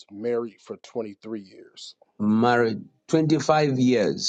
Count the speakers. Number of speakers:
two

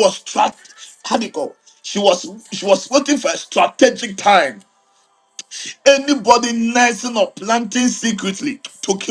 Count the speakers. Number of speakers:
one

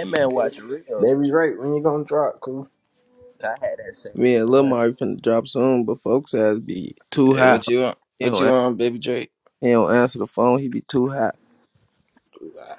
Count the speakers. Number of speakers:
four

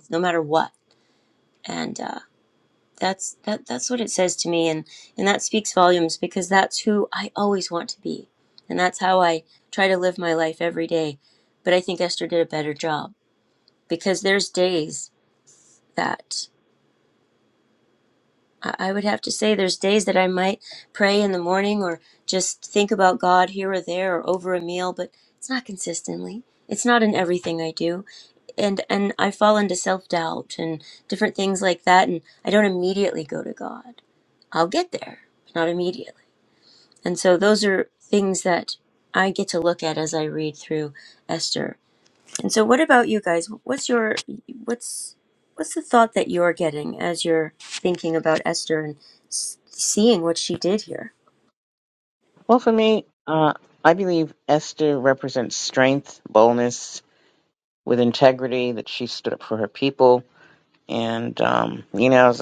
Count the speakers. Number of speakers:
two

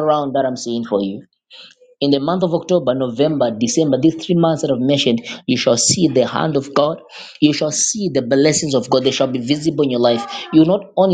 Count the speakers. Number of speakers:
one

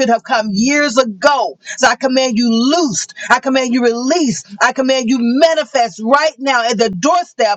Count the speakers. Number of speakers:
one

